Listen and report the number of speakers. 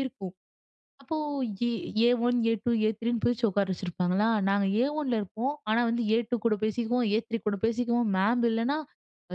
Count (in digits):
1